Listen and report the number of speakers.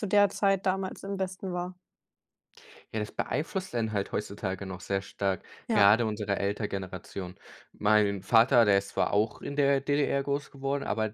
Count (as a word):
two